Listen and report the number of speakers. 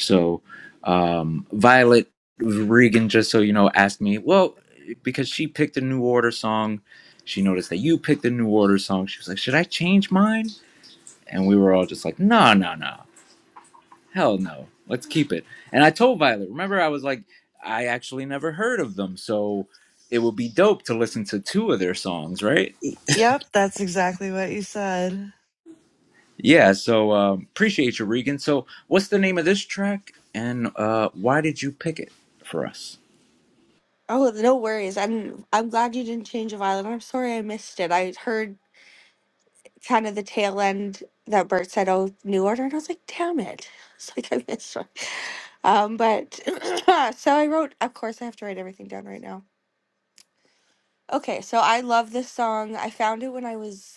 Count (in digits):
3